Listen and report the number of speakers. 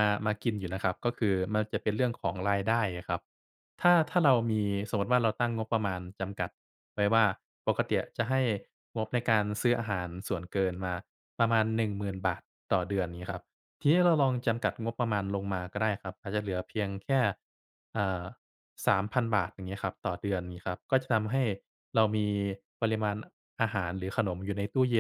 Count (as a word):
one